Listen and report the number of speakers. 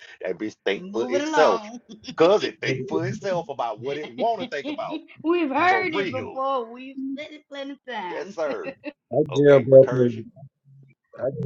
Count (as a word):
three